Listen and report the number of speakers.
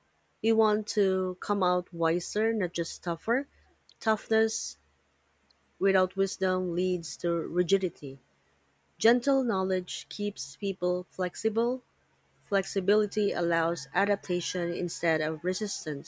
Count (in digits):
1